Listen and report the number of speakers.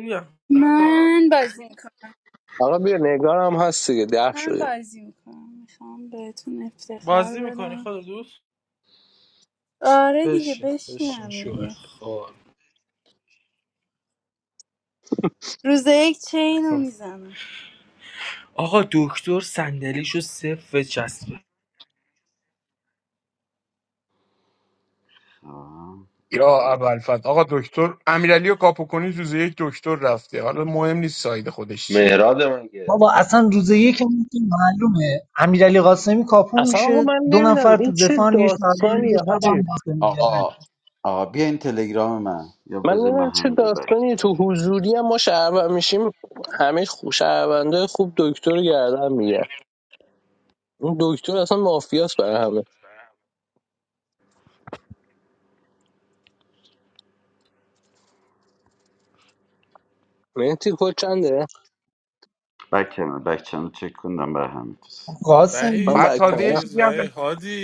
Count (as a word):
eight